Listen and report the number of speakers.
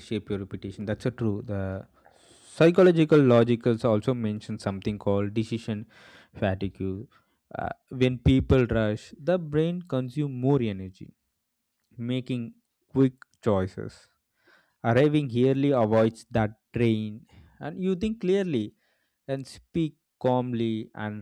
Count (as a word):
one